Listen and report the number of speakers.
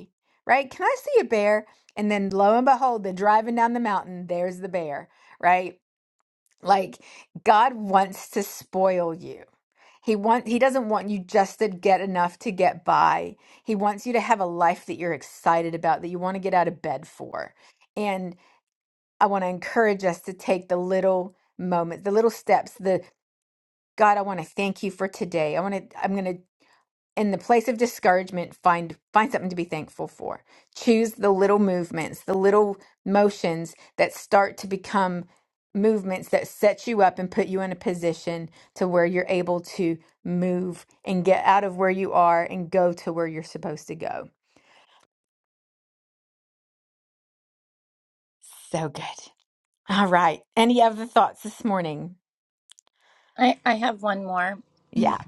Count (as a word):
two